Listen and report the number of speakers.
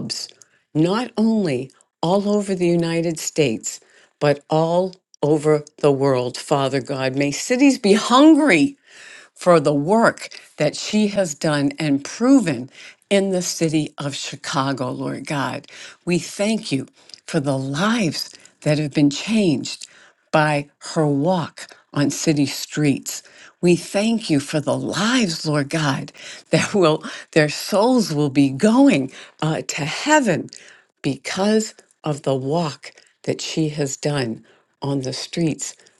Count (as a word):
one